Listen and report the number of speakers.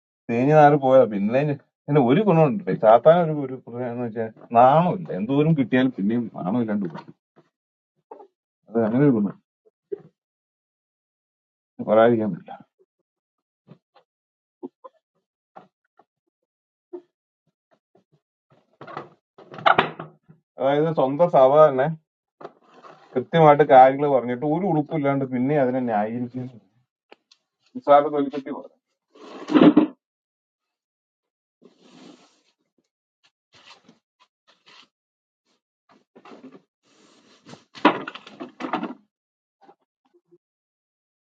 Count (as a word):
one